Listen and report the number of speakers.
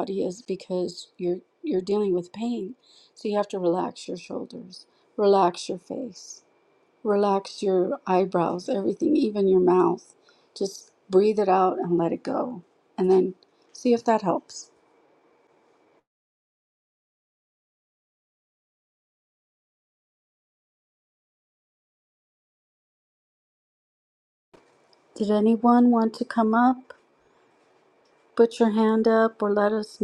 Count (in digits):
1